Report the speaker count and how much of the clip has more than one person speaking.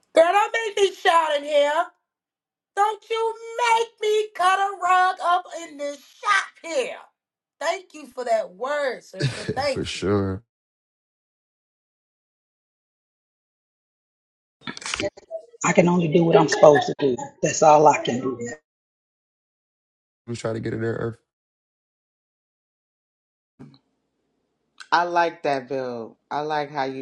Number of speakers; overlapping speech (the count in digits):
4, about 1%